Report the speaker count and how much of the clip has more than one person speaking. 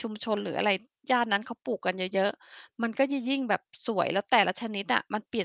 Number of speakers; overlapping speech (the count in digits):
1, no overlap